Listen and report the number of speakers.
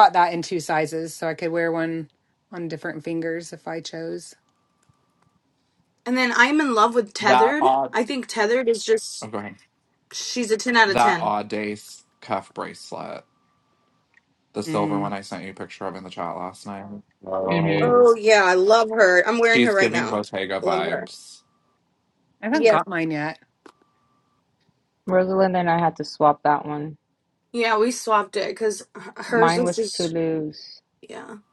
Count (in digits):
4